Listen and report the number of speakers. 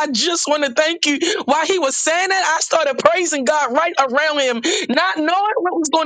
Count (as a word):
one